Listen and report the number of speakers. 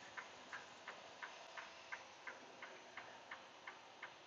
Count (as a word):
zero